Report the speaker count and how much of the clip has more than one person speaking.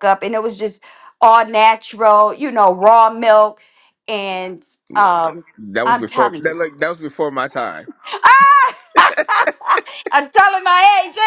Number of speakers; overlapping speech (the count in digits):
2, about 8%